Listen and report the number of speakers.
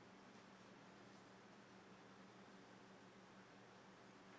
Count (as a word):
zero